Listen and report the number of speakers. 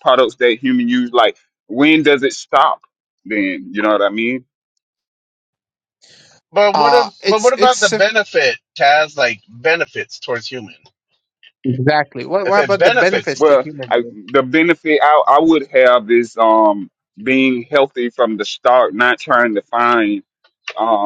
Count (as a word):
three